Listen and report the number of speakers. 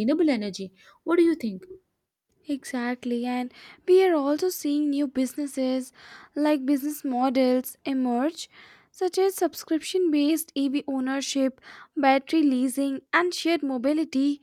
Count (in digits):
2